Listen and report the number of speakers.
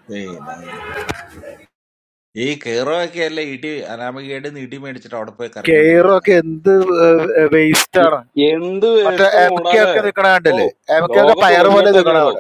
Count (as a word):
three